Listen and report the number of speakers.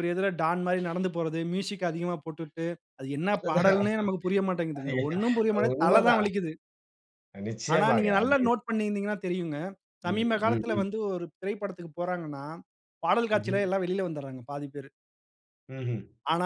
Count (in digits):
2